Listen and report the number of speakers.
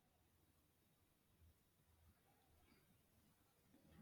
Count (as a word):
zero